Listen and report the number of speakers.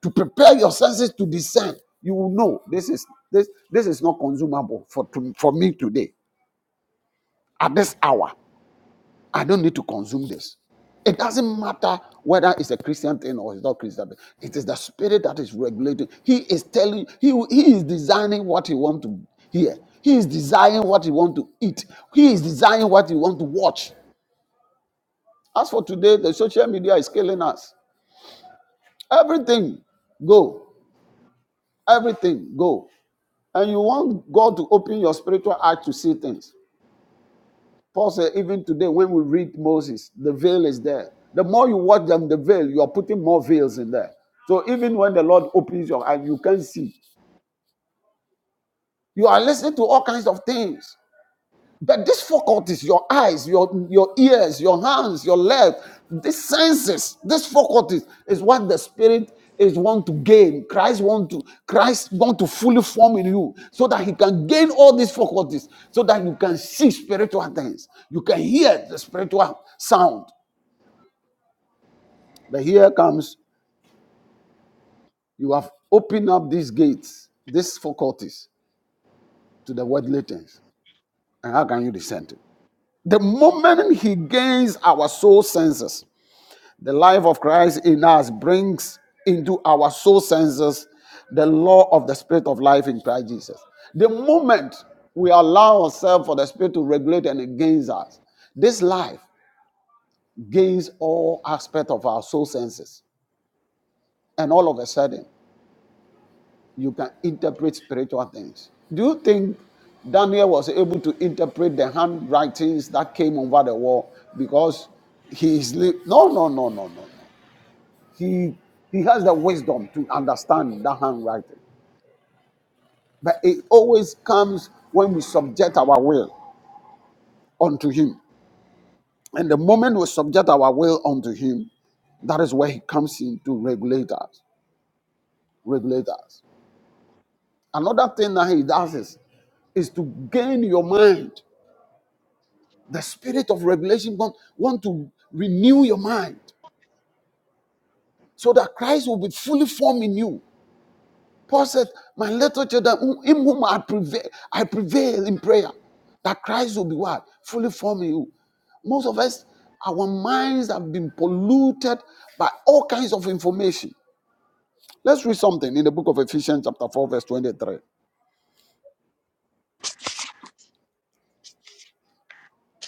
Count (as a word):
one